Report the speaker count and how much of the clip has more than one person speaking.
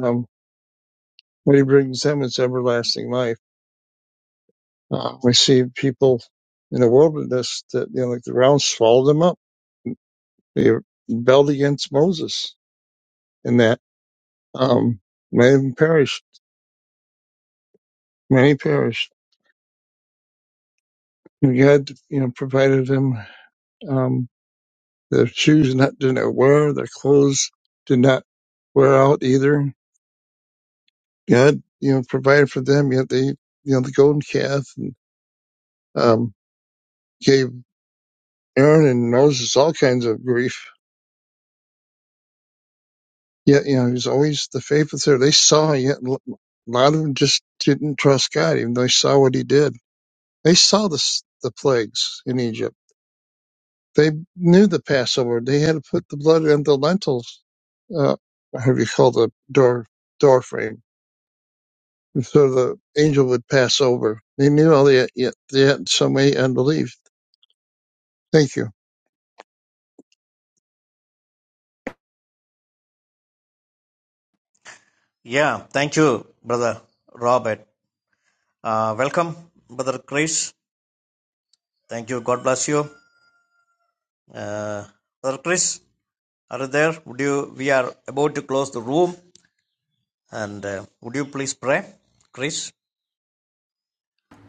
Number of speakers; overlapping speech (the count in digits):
2, no overlap